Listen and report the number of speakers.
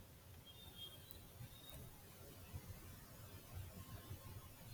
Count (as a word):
zero